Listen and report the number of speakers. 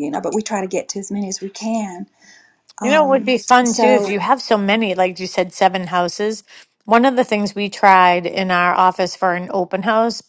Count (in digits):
2